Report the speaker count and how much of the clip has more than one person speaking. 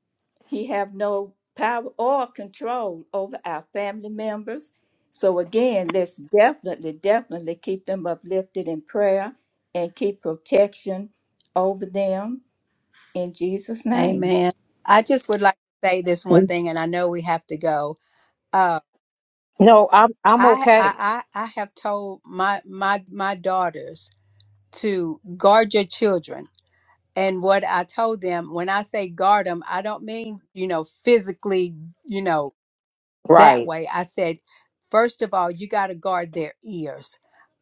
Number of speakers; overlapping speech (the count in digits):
3, about 3%